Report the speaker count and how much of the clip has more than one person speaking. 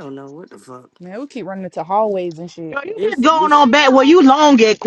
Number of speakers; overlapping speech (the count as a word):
three, about 12%